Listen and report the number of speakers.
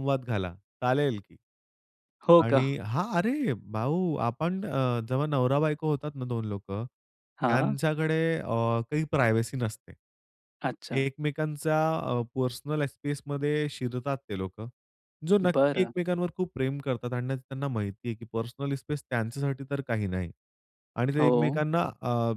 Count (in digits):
2